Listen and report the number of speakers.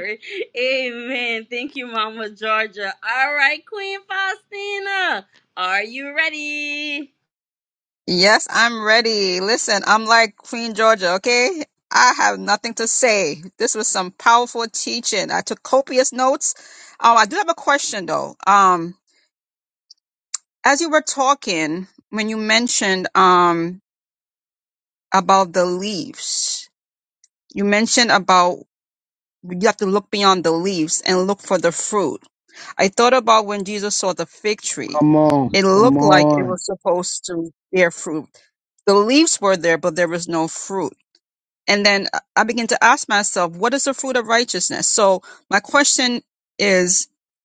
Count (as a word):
three